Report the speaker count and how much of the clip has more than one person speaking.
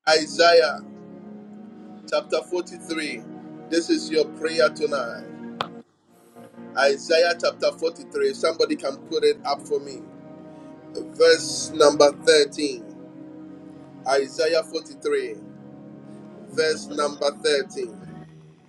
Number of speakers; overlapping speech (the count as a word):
one, no overlap